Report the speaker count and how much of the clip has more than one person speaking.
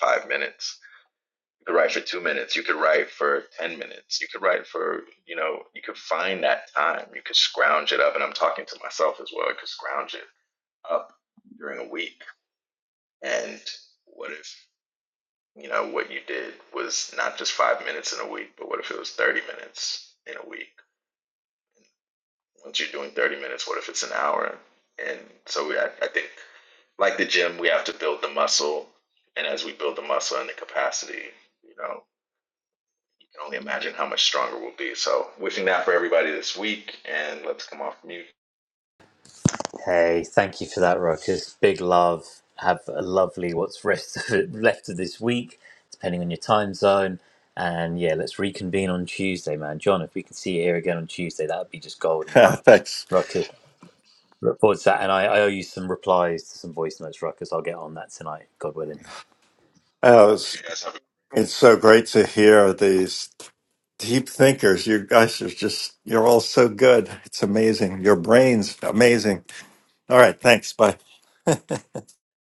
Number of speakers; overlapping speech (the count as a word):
three, under 1%